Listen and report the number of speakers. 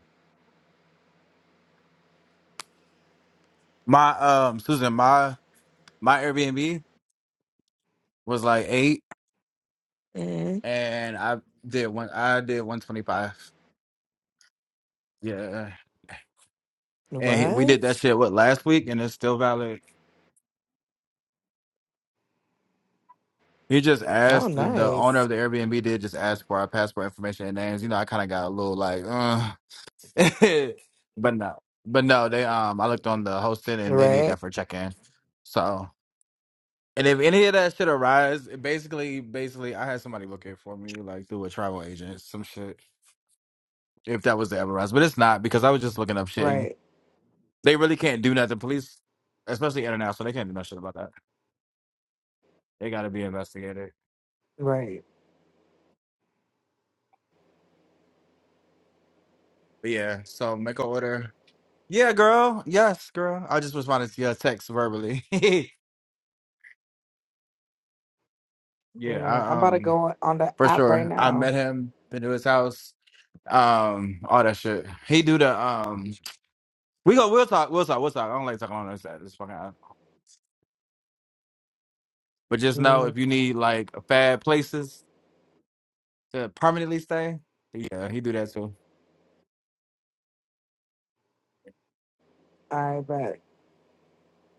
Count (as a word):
two